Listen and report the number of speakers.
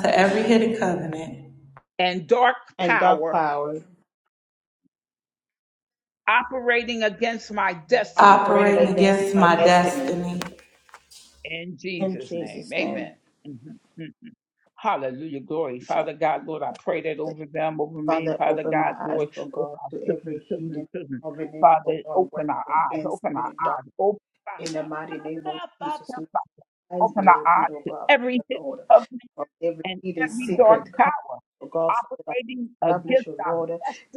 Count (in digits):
3